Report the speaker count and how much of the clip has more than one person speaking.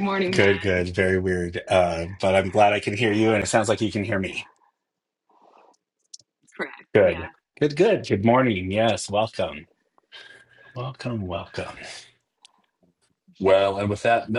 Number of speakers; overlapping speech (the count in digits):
3, about 6%